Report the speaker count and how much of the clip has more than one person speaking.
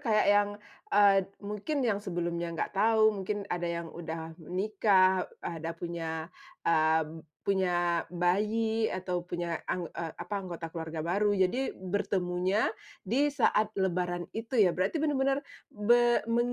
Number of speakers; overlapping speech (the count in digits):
1, no overlap